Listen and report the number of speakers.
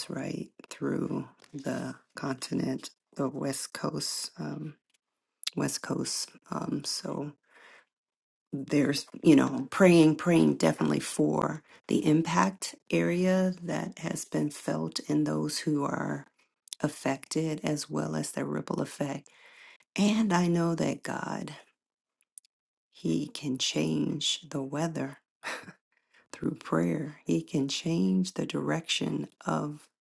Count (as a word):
one